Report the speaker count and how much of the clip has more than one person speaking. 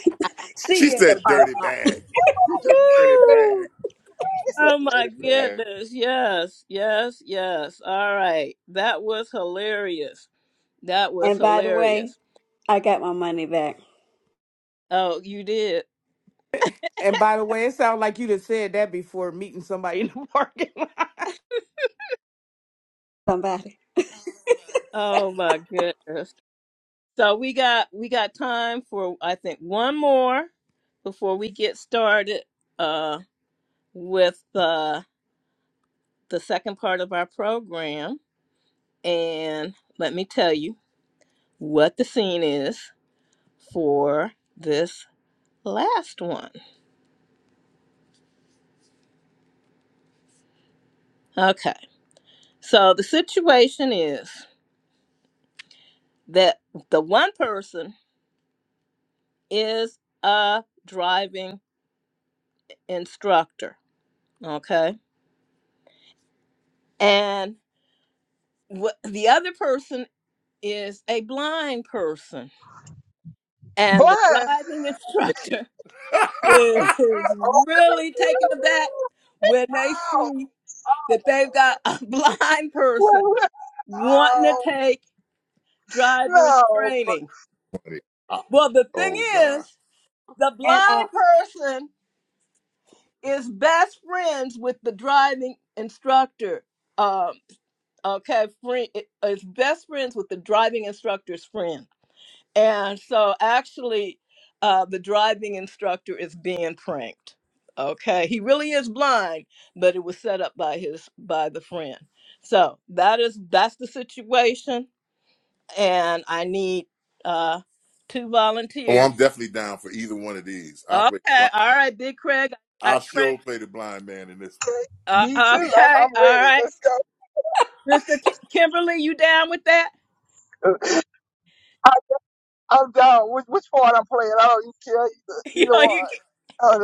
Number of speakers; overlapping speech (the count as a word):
five, about 7%